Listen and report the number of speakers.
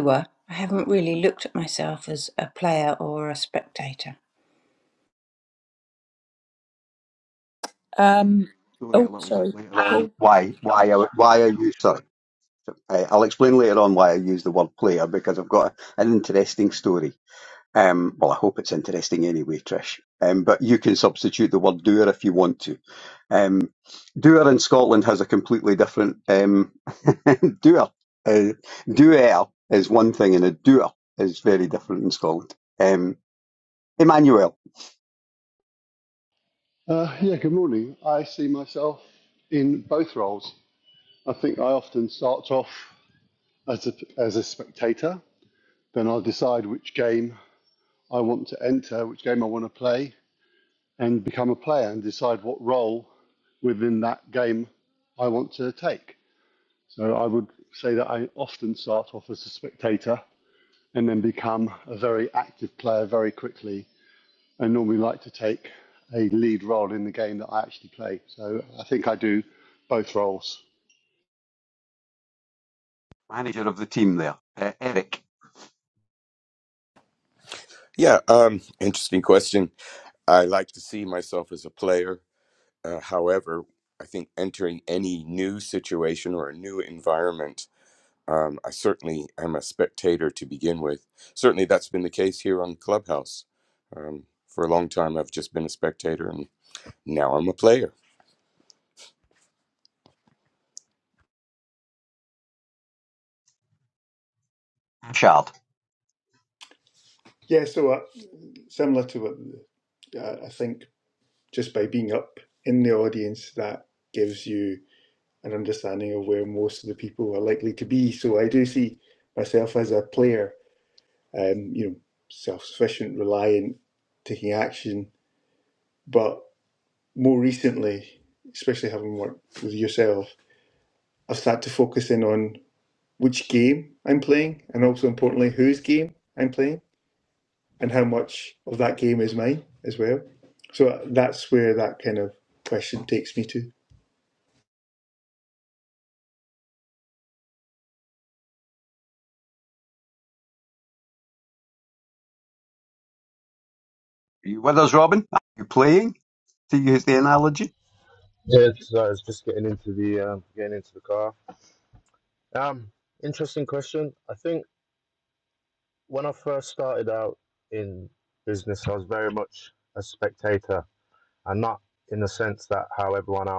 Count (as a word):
seven